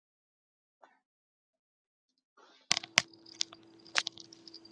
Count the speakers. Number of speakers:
0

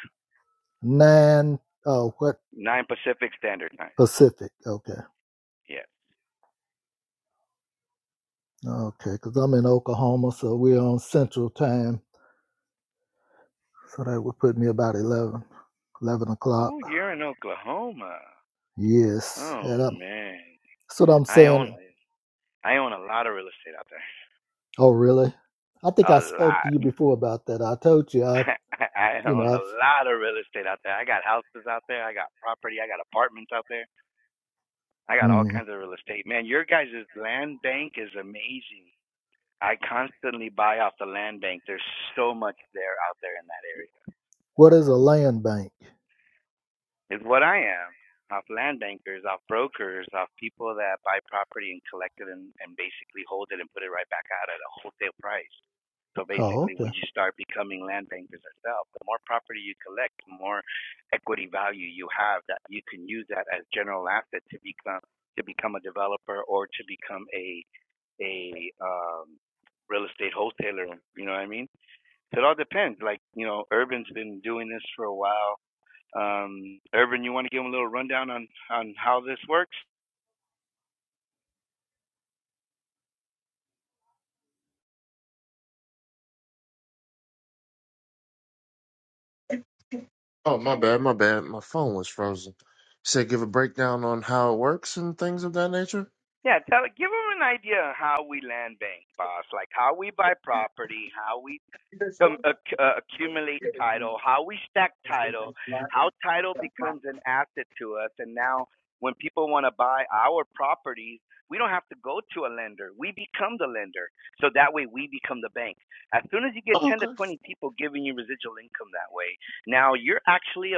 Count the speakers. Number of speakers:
3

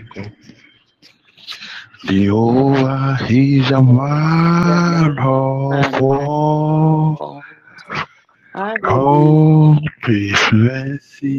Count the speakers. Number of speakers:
2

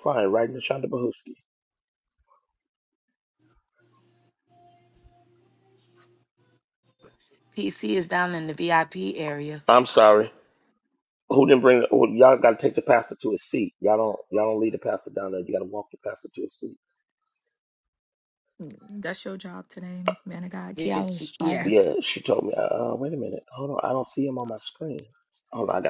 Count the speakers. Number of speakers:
3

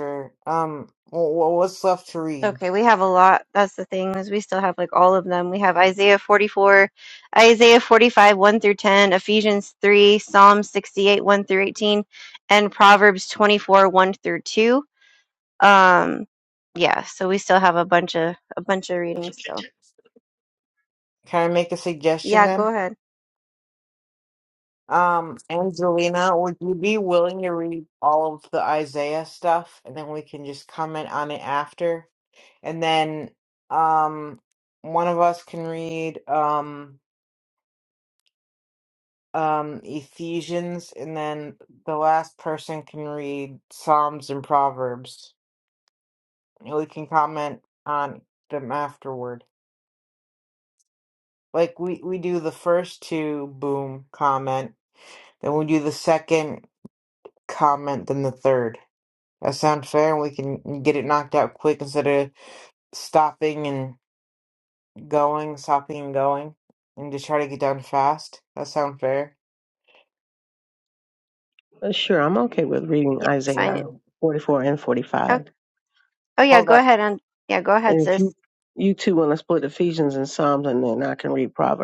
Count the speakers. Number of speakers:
3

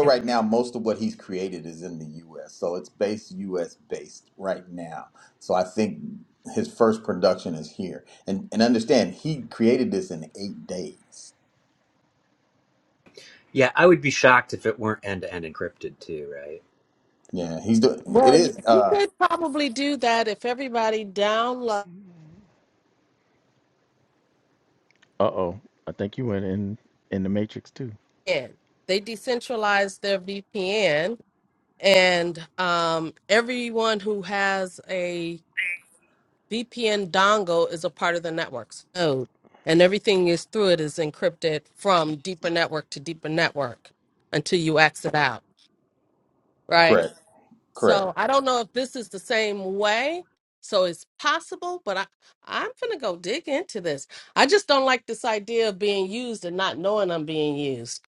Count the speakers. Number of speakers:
4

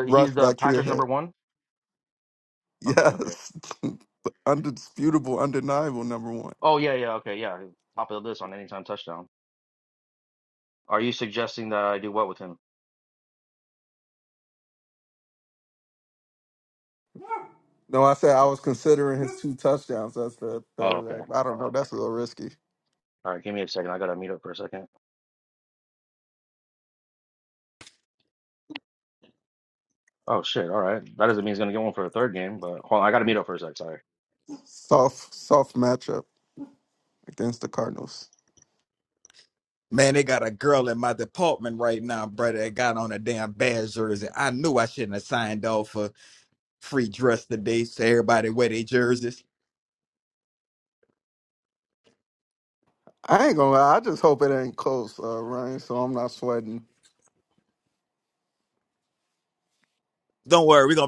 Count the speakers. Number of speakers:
3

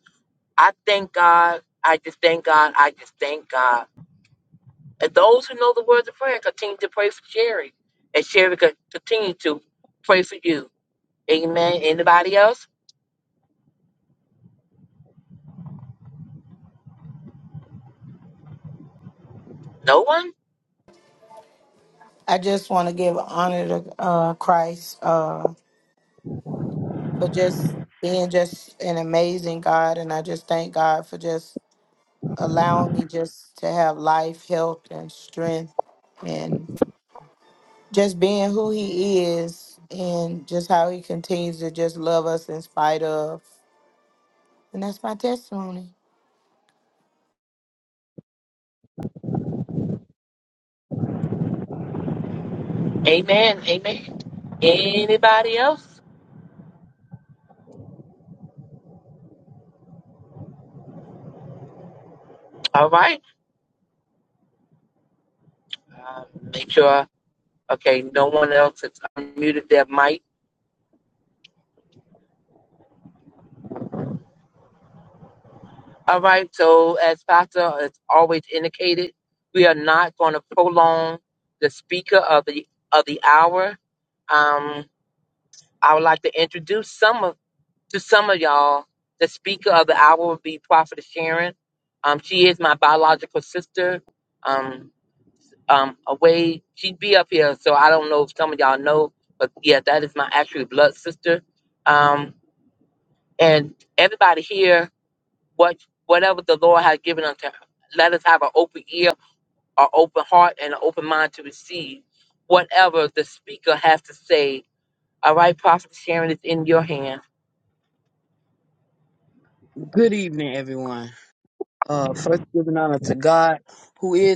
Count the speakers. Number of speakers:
3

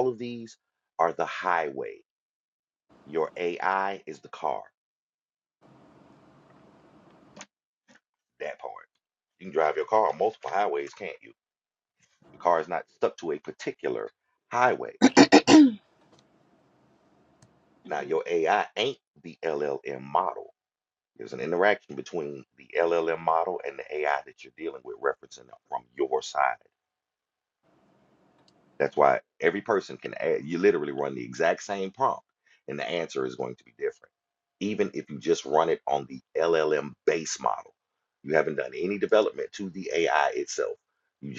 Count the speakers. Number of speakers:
1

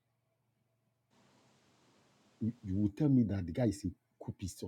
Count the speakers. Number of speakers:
1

